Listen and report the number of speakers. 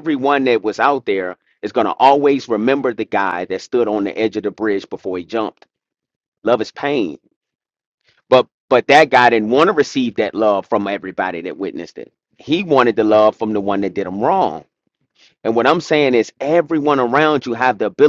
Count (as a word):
one